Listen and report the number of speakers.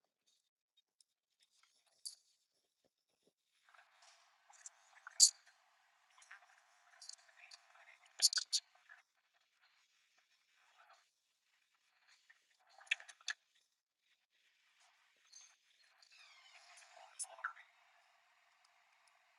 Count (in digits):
0